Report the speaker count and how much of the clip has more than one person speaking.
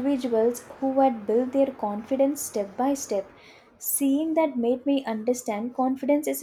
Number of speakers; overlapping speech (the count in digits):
1, no overlap